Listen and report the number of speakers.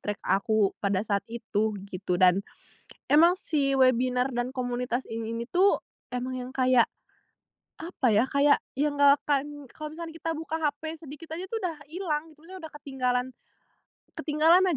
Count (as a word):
one